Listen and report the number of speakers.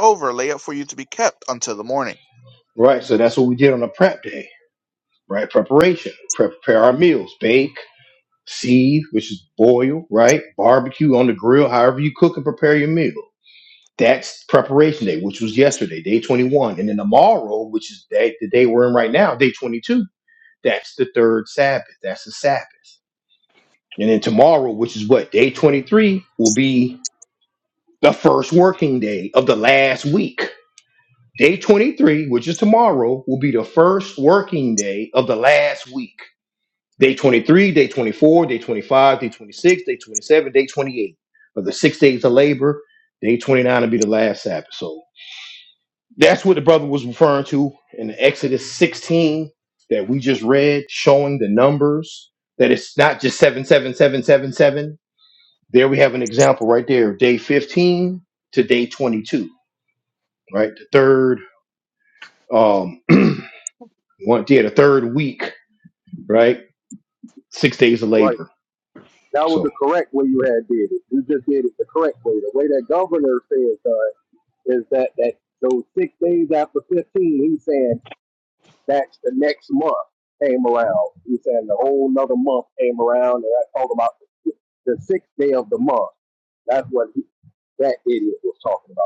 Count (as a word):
three